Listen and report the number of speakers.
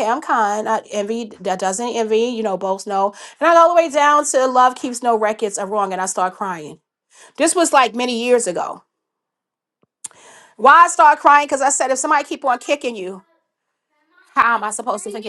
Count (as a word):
one